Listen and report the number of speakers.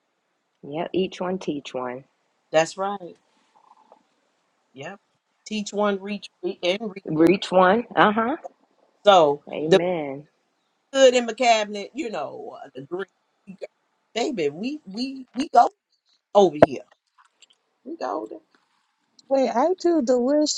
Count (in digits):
3